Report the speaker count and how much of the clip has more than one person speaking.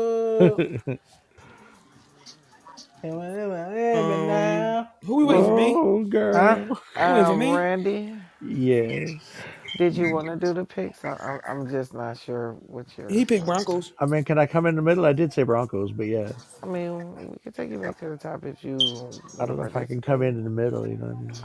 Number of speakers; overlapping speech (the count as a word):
four, about 17%